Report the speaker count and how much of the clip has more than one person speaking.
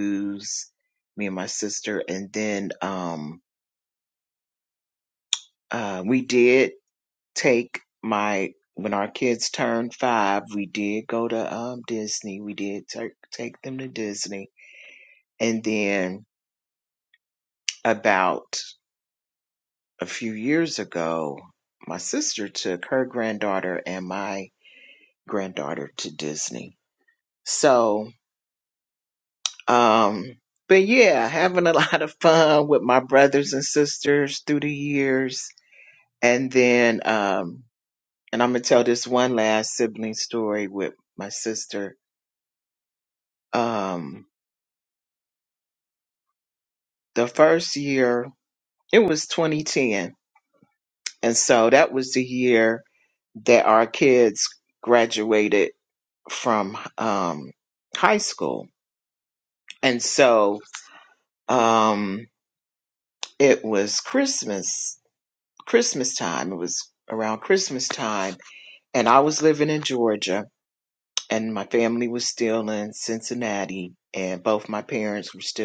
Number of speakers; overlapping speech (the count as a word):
one, no overlap